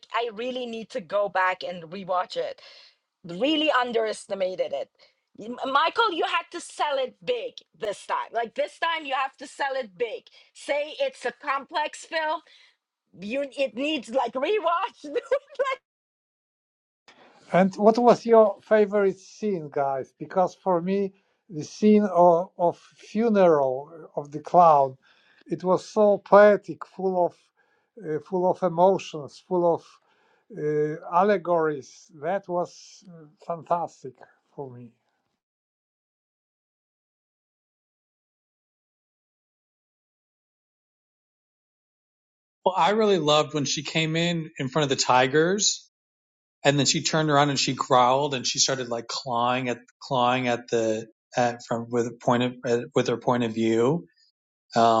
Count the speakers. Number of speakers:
3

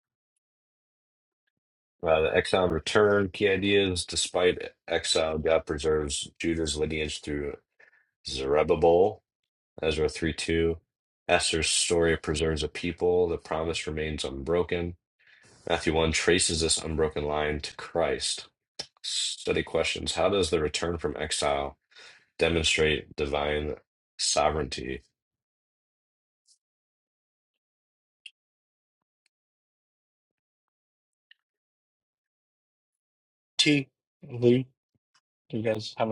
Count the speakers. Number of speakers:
2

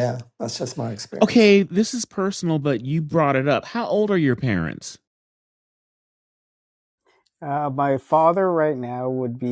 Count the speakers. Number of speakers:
3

